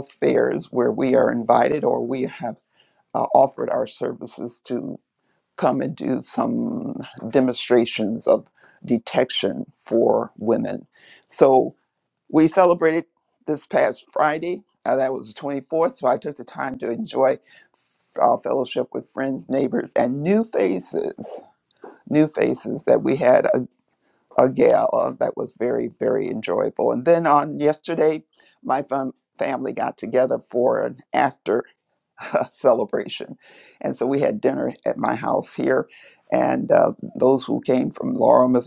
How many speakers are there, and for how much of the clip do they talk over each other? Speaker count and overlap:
one, no overlap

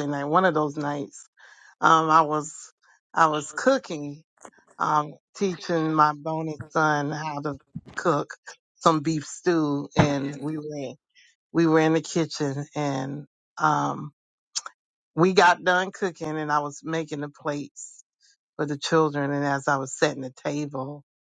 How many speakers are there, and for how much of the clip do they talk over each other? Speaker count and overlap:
one, no overlap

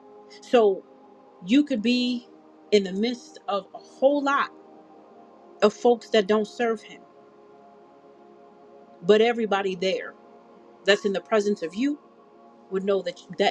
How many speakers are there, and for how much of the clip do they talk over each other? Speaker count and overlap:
one, no overlap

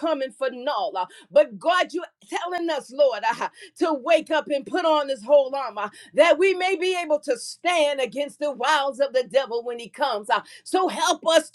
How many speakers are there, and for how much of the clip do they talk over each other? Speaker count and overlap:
one, no overlap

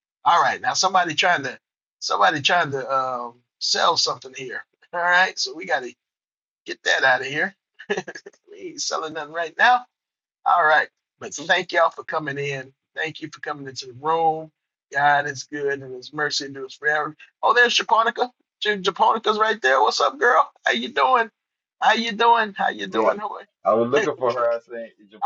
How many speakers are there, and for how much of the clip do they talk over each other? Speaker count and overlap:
two, about 1%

